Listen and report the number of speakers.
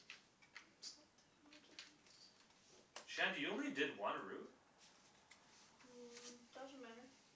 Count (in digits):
2